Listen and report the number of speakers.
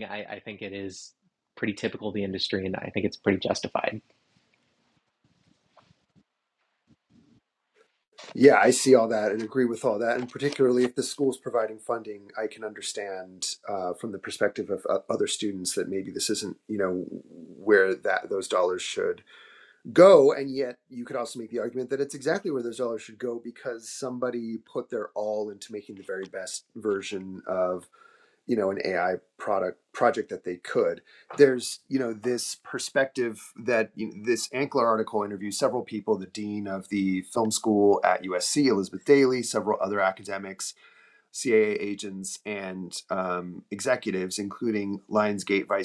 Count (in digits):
2